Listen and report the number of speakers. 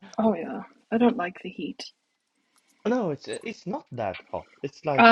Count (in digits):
2